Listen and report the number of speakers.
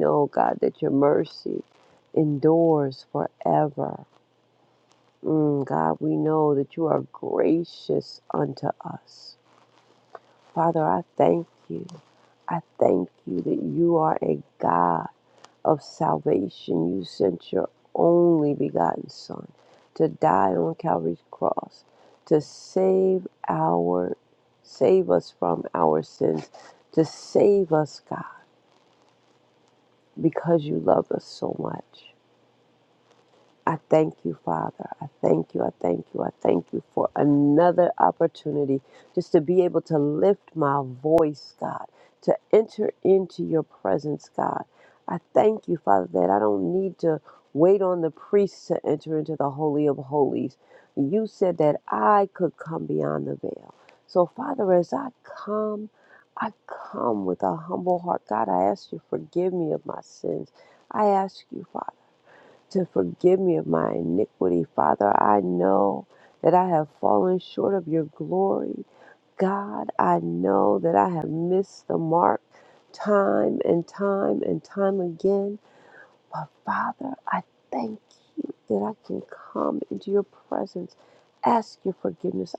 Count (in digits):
1